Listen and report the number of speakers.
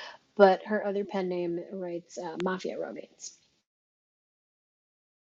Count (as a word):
one